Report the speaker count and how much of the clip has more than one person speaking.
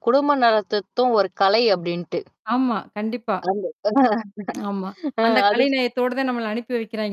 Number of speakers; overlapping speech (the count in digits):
2, about 7%